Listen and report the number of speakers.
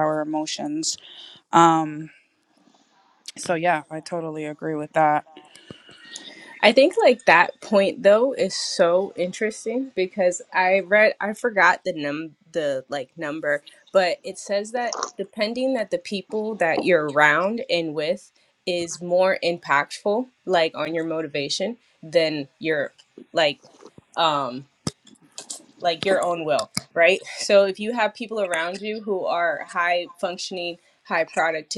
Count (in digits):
2